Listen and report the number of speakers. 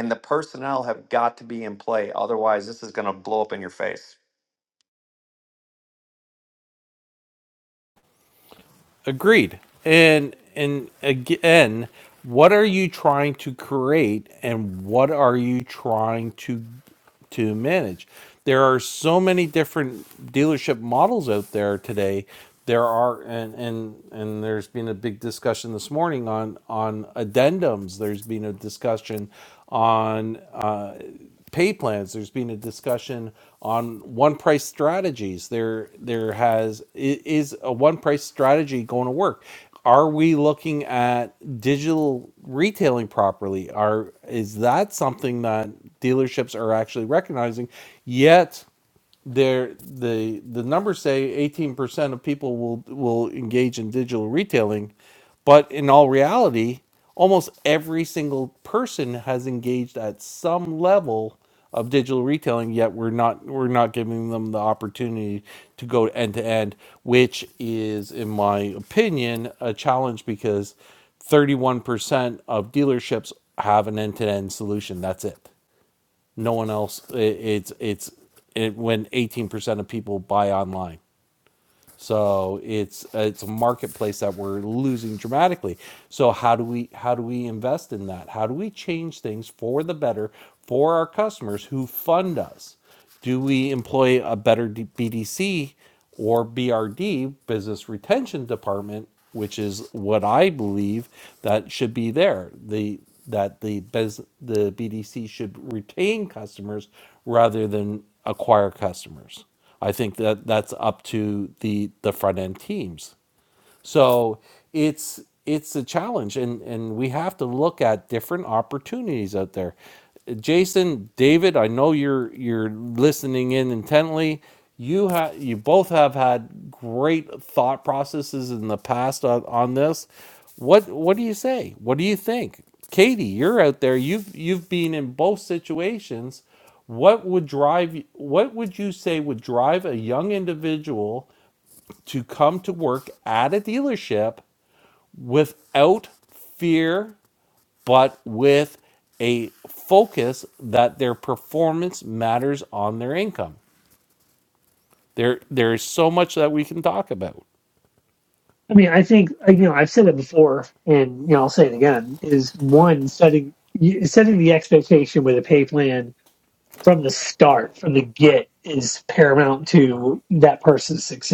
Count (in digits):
3